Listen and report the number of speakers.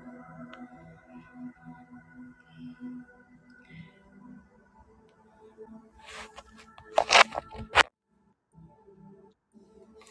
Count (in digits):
0